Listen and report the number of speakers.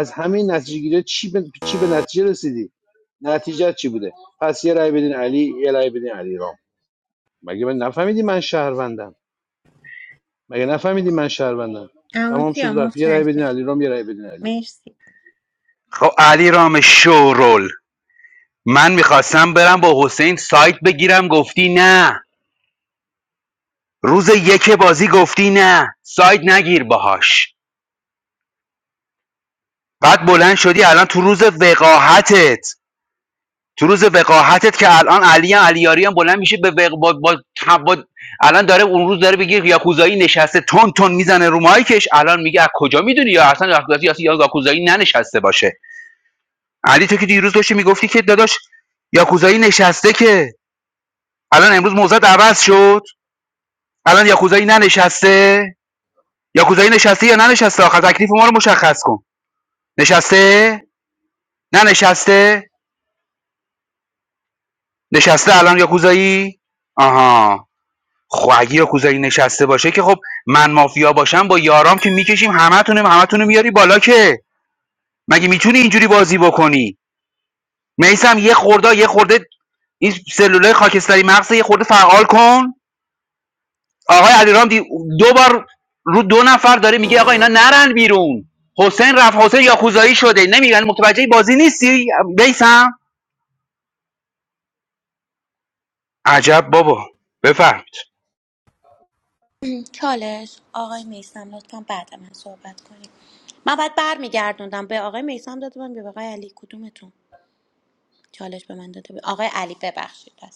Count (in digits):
4